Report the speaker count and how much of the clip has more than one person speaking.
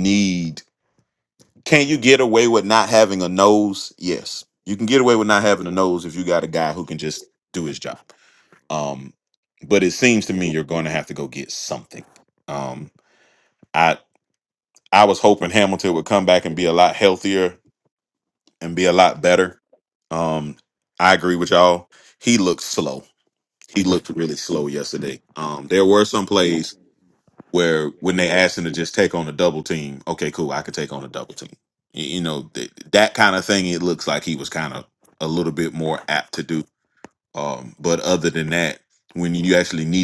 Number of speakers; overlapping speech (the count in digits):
1, no overlap